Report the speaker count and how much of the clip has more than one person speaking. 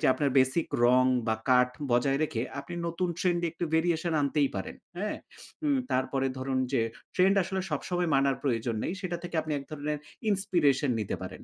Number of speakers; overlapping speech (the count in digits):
1, no overlap